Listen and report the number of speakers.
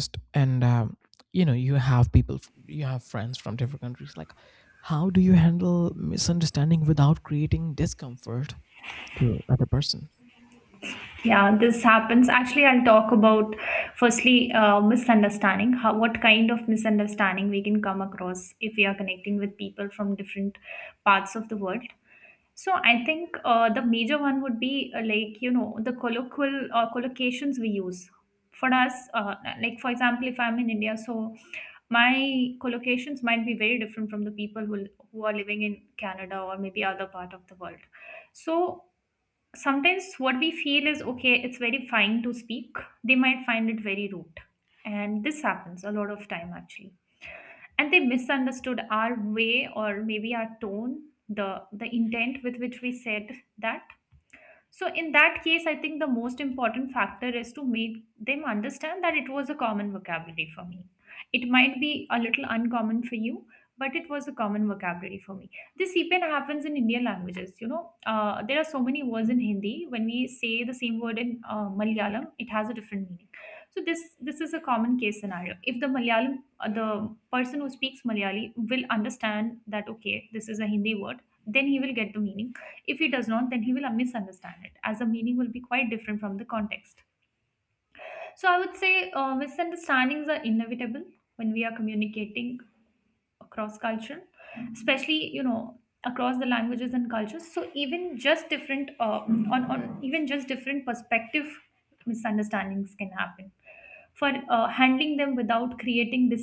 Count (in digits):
2